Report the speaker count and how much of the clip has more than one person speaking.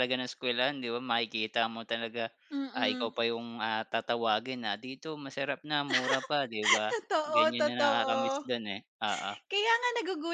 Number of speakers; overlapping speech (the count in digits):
2, about 15%